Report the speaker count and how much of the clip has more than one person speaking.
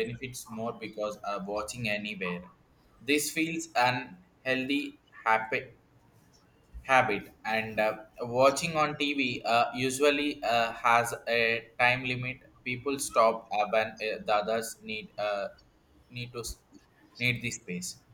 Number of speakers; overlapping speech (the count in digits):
1, no overlap